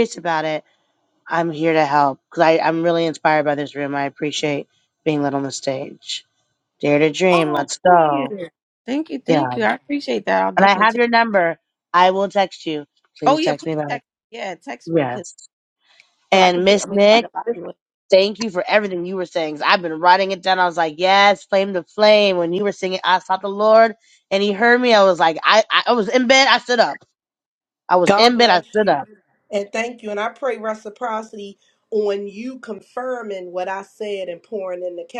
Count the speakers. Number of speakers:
3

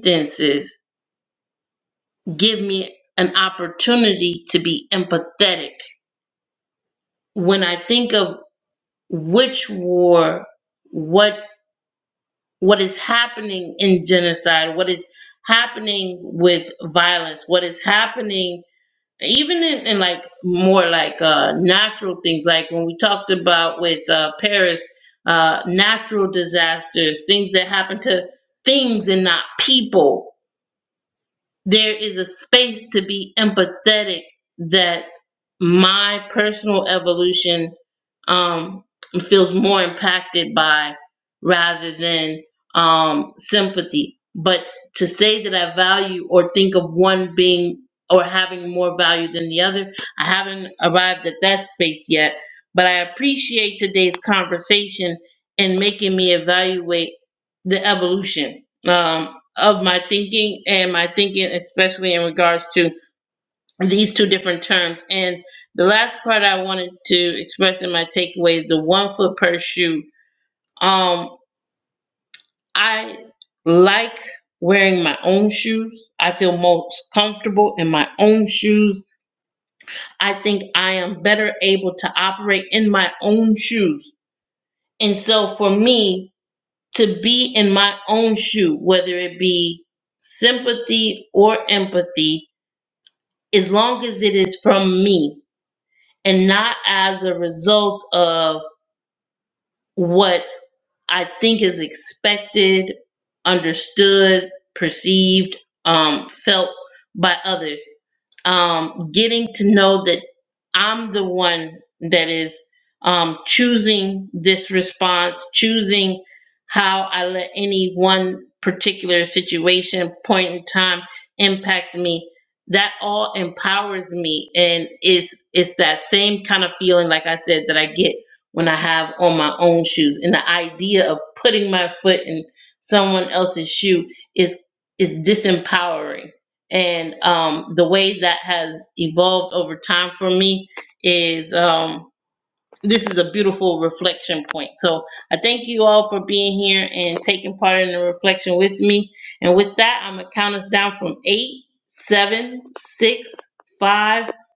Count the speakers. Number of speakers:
1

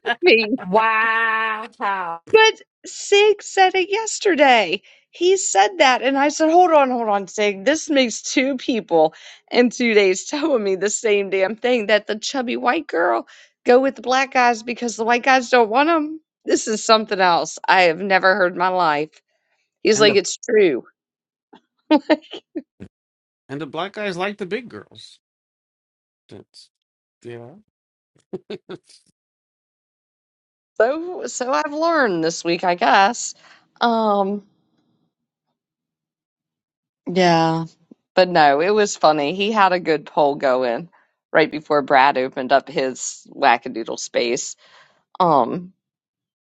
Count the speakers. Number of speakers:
3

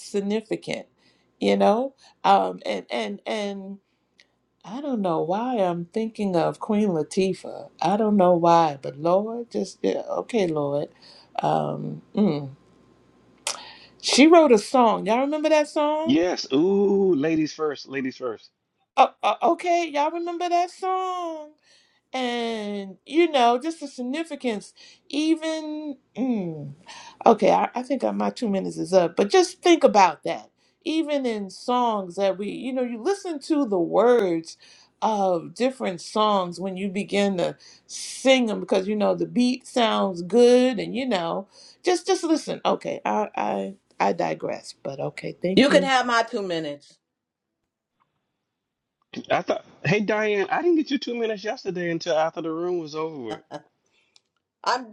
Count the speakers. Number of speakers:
3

